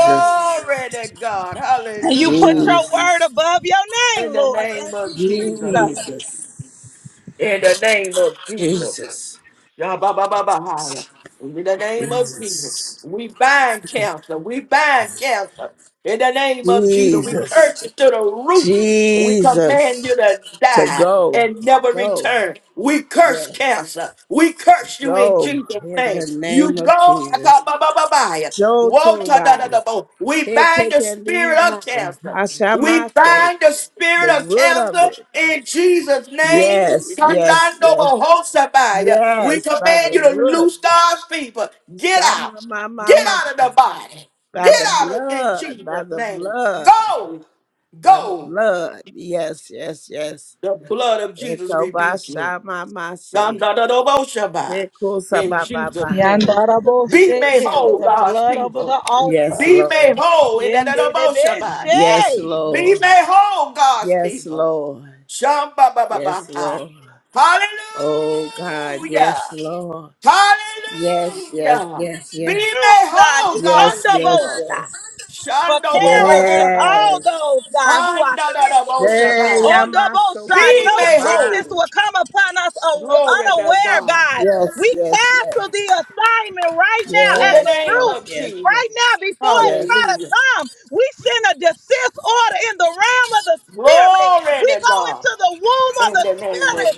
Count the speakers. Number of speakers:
three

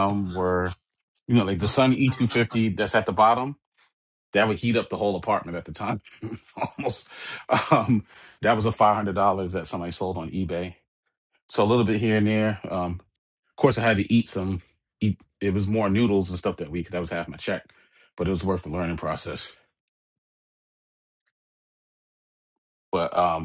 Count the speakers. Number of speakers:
one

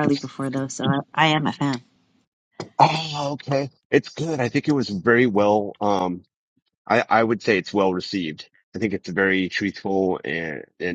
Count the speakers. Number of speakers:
two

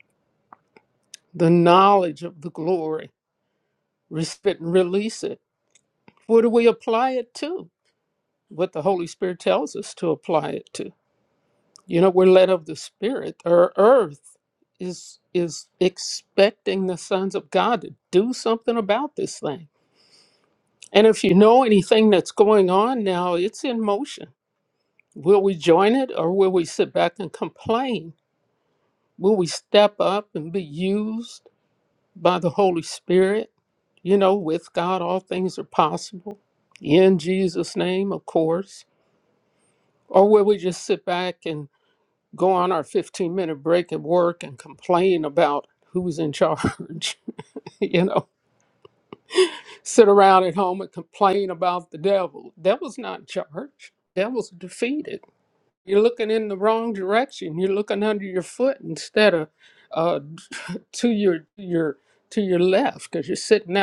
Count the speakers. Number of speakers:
one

